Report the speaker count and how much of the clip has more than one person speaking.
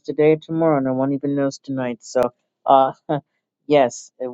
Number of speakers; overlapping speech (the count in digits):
1, no overlap